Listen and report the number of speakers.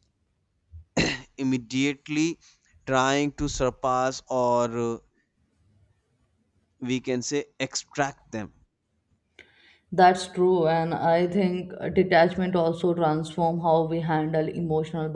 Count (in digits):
2